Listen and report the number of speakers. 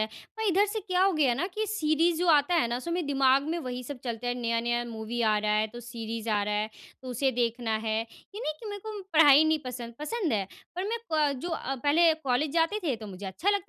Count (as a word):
one